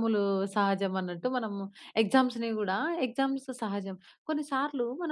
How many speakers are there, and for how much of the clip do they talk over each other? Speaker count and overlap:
one, no overlap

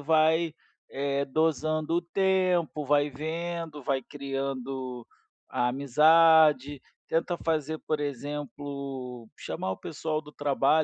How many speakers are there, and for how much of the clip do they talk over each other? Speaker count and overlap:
one, no overlap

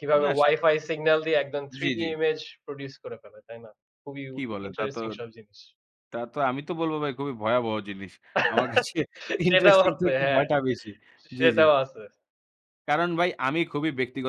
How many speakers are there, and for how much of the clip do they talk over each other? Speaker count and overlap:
two, about 20%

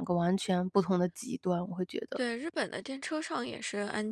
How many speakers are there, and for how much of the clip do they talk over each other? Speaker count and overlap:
two, under 1%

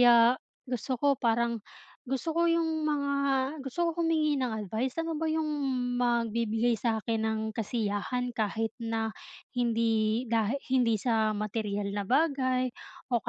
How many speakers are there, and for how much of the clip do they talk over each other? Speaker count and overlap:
one, no overlap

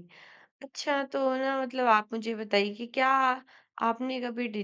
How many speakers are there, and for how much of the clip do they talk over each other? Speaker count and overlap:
one, no overlap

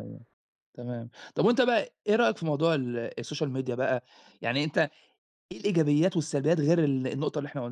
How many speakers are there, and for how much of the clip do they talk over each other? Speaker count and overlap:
one, no overlap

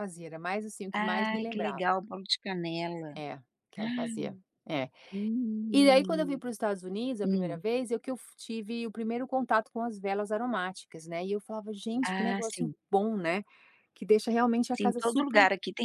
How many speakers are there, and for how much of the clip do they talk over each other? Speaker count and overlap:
two, about 19%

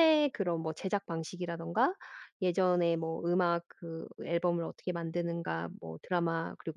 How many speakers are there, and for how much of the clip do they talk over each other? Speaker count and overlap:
one, no overlap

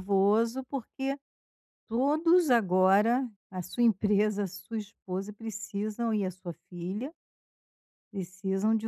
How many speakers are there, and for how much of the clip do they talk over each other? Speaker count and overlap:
one, no overlap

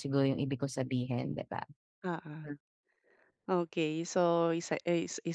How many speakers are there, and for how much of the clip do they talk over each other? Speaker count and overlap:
two, no overlap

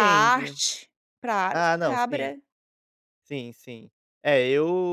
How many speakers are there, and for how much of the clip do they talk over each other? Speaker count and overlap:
two, about 27%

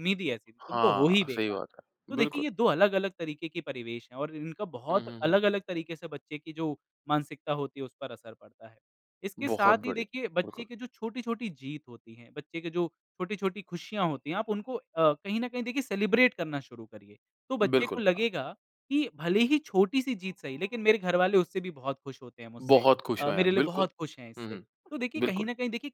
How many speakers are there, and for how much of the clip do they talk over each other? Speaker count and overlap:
two, about 18%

